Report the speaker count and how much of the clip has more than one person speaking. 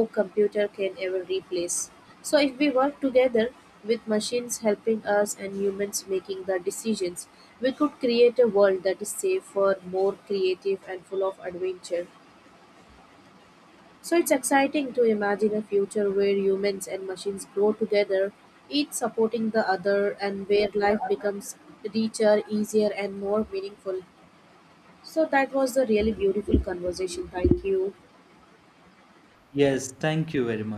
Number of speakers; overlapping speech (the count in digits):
2, no overlap